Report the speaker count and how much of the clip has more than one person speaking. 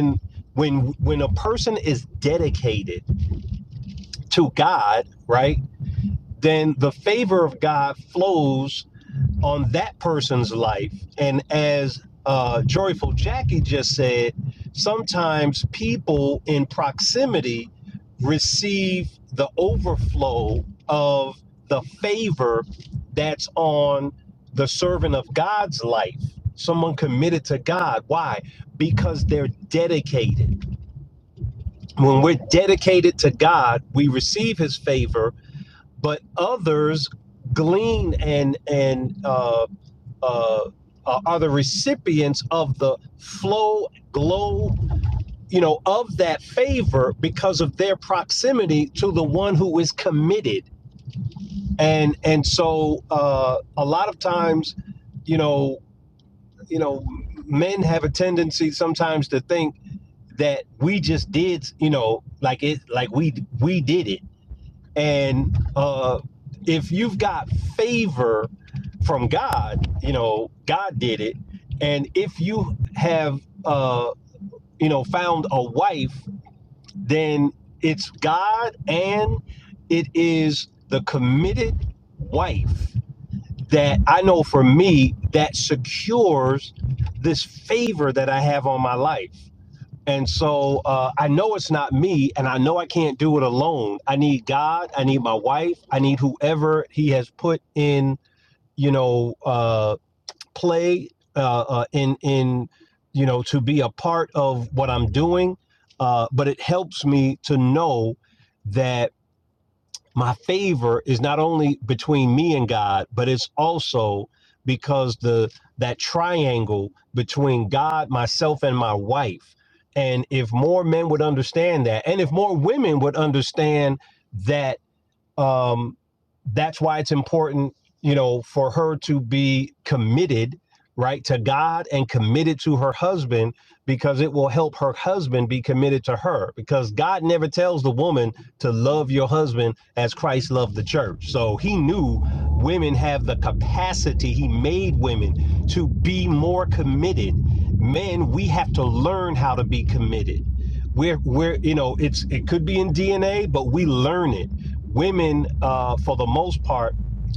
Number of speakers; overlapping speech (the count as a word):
one, no overlap